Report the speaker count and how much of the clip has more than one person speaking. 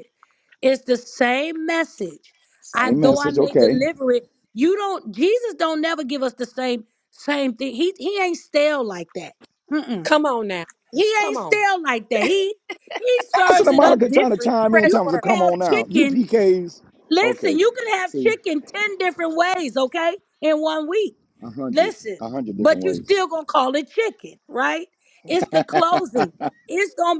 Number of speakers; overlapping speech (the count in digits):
3, about 21%